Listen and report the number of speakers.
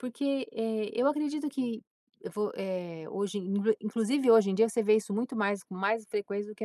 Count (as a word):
one